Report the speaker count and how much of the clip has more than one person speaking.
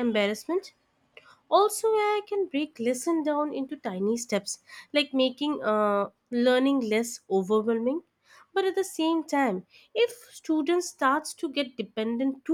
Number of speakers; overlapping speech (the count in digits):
1, no overlap